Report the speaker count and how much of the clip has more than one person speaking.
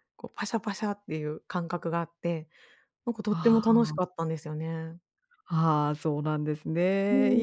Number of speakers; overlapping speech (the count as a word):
two, about 14%